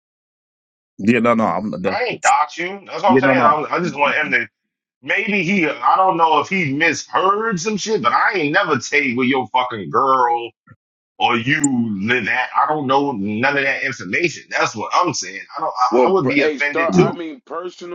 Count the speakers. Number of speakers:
3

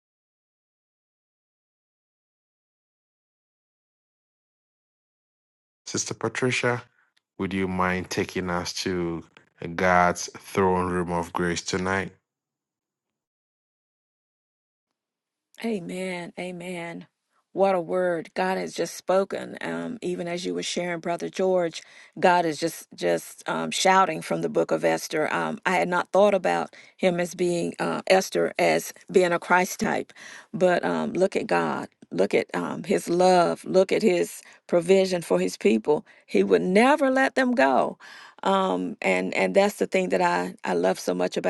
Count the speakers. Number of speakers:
2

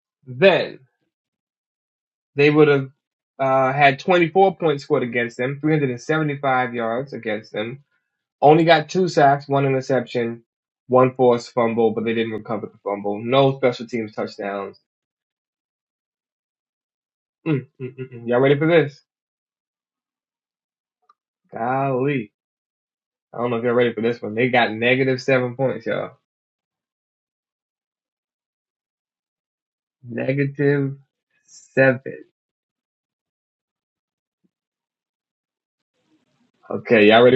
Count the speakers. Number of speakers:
1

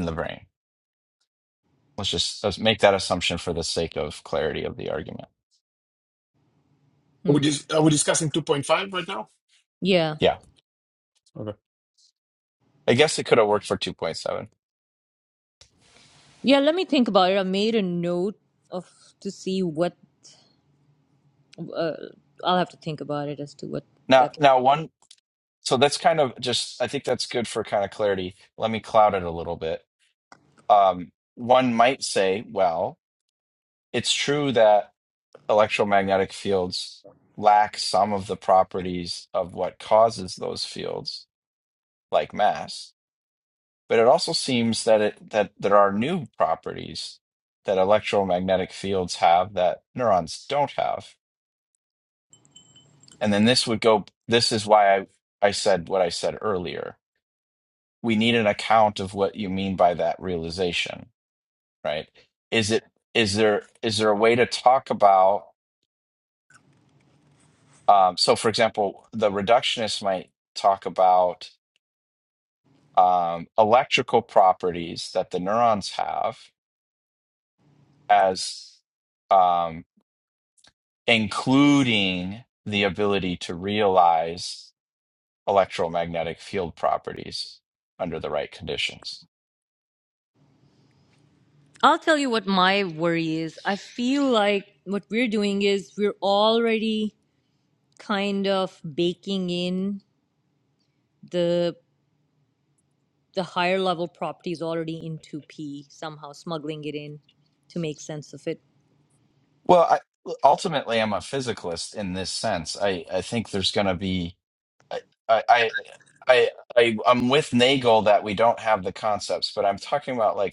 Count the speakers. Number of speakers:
3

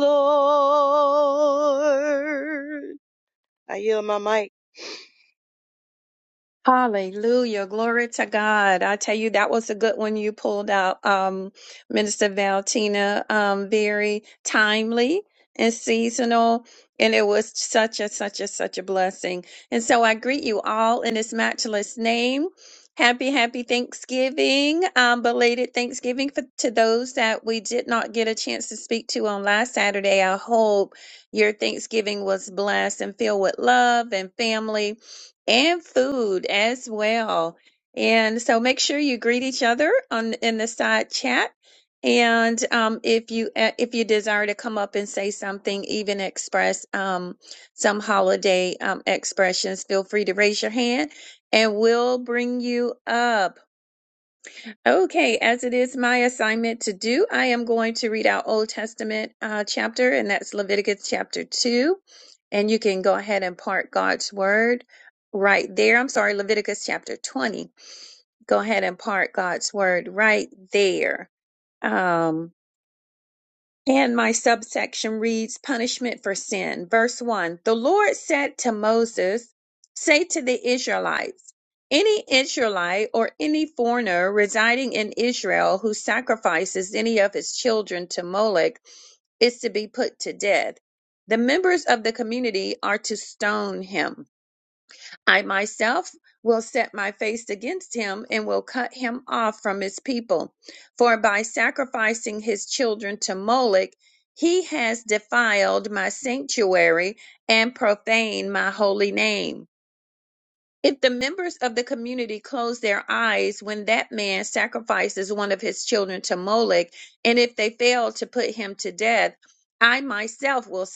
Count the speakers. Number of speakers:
2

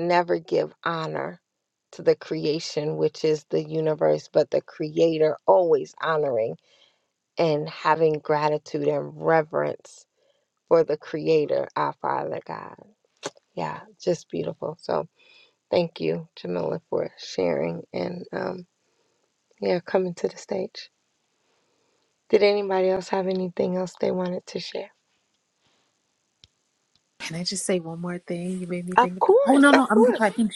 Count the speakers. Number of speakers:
2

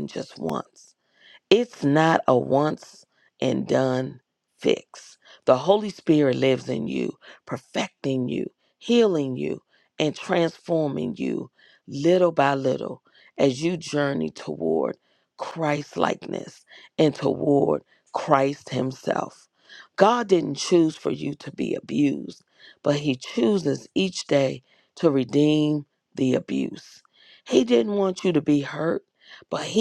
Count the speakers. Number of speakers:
1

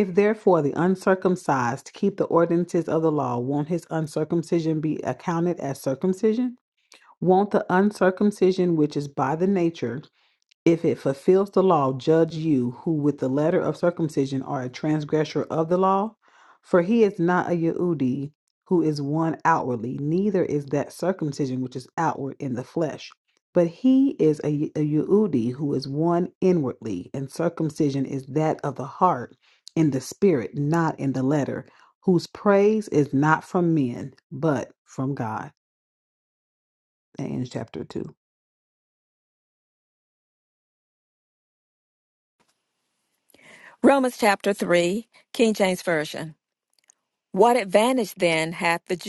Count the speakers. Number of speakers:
2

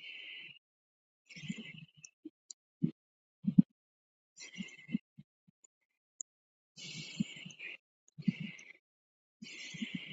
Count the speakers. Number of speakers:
0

